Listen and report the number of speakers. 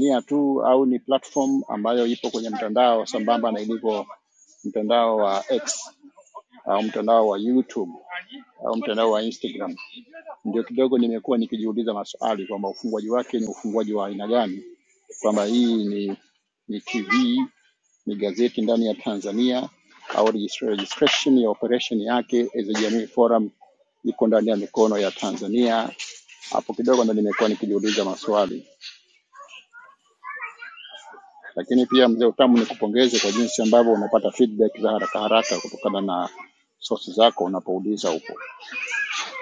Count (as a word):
one